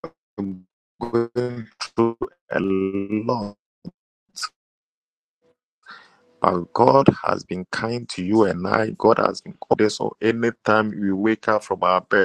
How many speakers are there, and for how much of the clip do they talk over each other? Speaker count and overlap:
one, no overlap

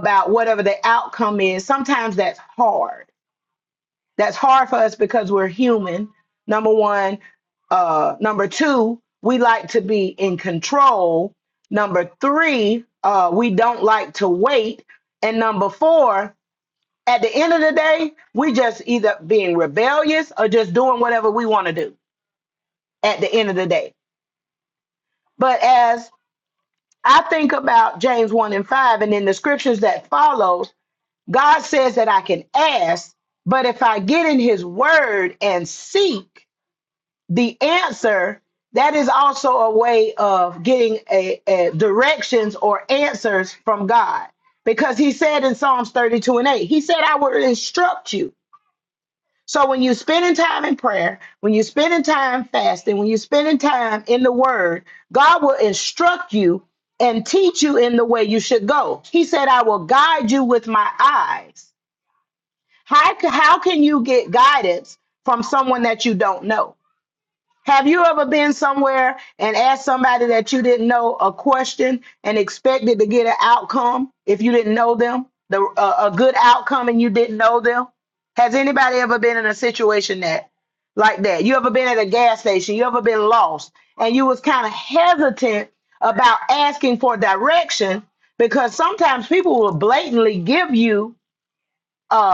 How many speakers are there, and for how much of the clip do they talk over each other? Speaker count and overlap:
one, no overlap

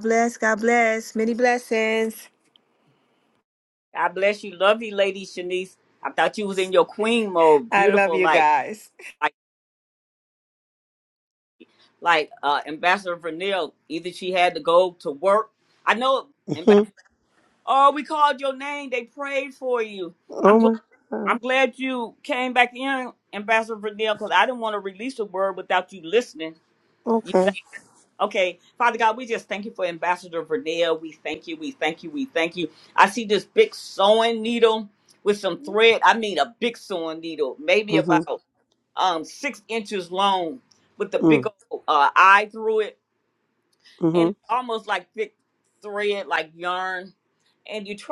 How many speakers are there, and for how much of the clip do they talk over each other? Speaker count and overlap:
three, about 5%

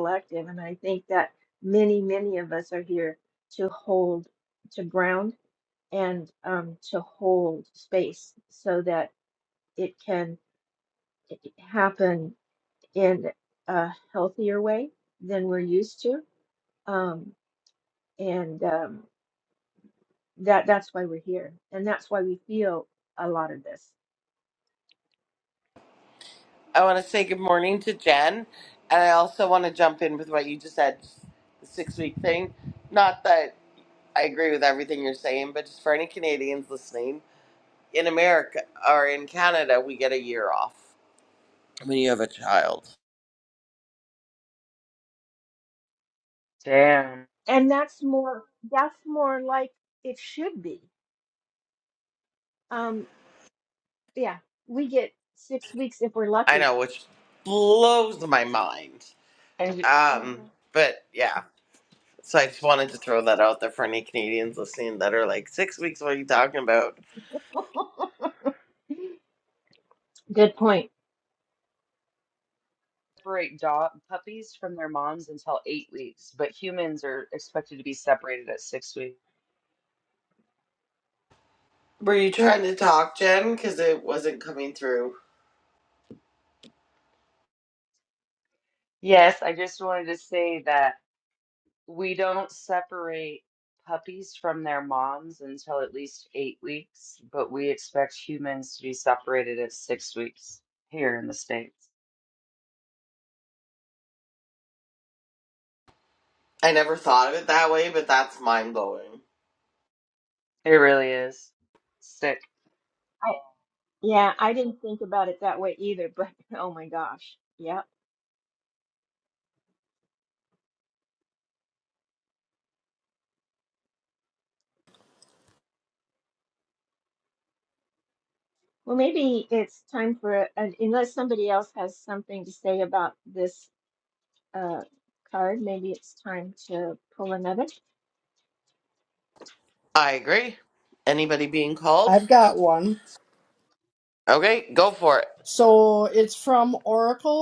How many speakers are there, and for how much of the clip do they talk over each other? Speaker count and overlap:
four, under 1%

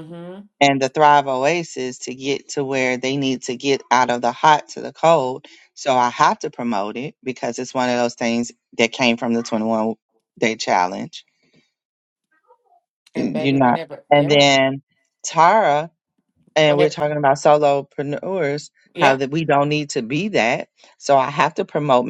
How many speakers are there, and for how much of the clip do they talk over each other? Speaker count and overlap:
two, about 6%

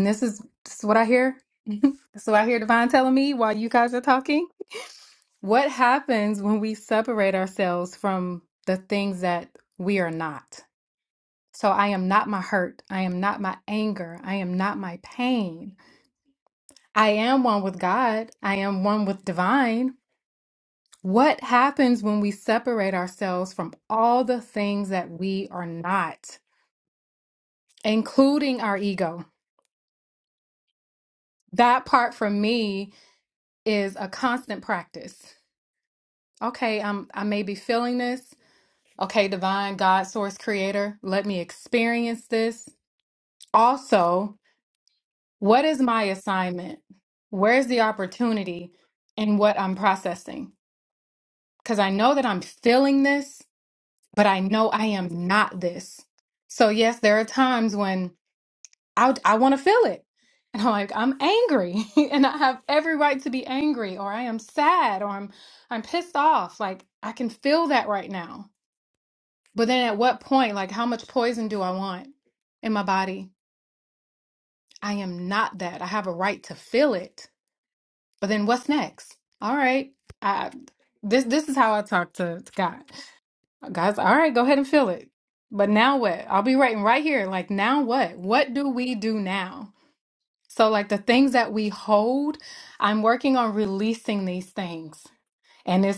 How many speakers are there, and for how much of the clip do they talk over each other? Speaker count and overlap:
one, no overlap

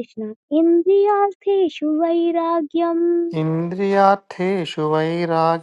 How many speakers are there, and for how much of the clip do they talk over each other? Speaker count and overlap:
two, no overlap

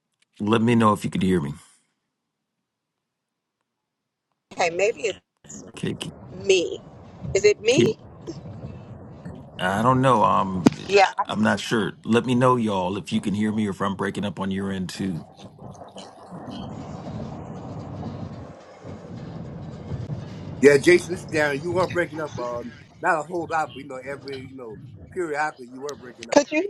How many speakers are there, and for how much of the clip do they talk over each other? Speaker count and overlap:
three, about 1%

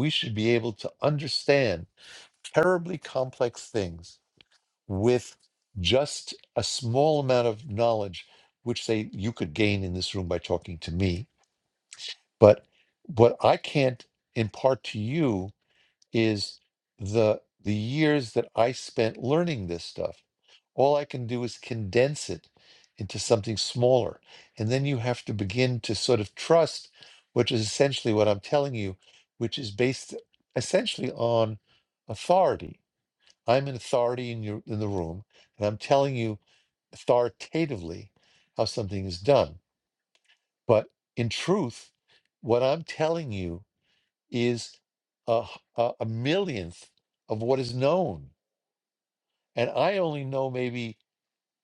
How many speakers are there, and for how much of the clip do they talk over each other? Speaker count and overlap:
one, no overlap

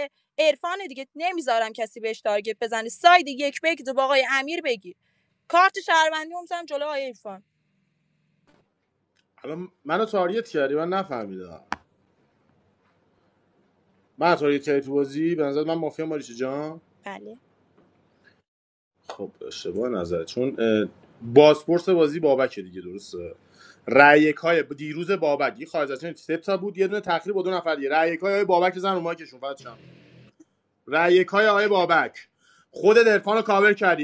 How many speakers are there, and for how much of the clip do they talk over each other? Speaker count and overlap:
two, no overlap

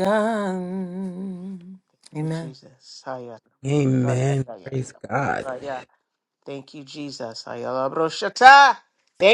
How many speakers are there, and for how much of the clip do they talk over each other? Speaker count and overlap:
three, about 7%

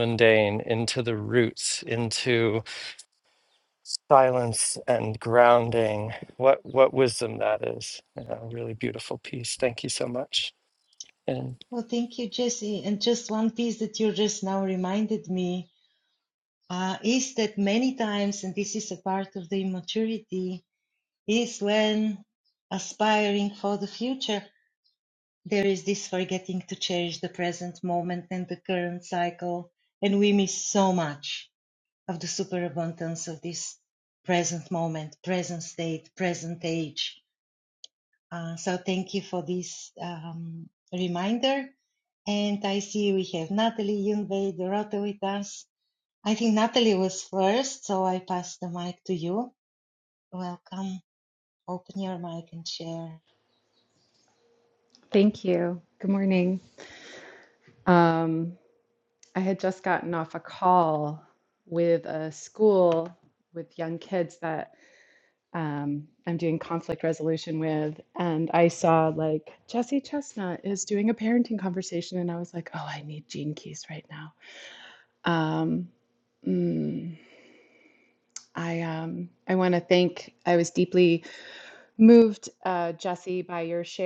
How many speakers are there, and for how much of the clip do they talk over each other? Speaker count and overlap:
three, no overlap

